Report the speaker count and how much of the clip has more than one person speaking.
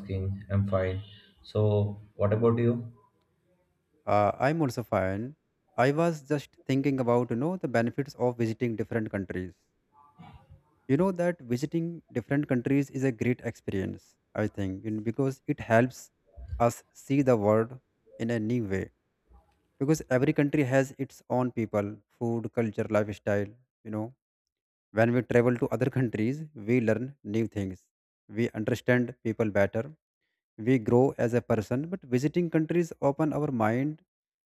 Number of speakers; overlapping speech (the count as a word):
two, no overlap